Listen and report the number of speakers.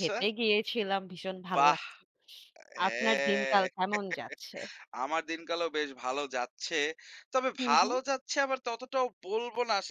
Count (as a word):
two